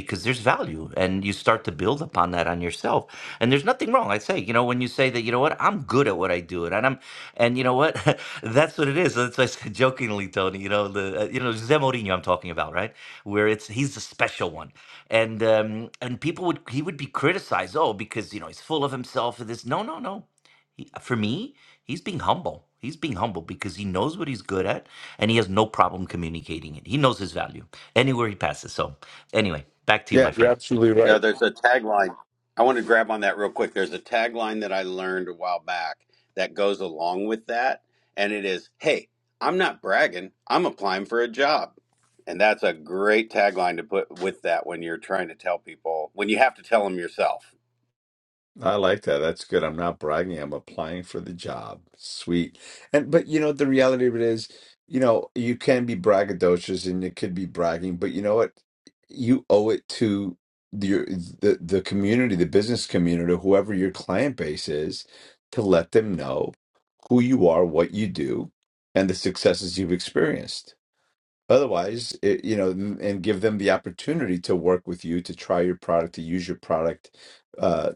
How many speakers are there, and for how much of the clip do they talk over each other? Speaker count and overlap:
3, about 1%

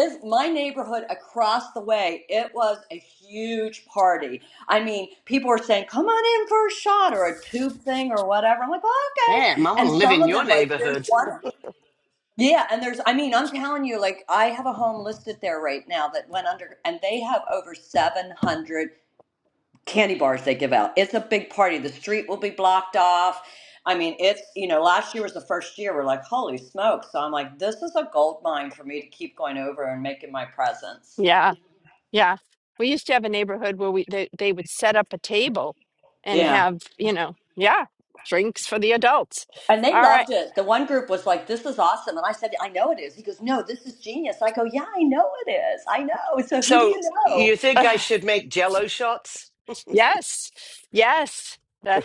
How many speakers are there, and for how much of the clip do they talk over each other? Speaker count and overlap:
3, about 7%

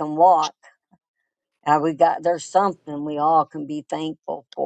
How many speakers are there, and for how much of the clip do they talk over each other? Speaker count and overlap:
1, no overlap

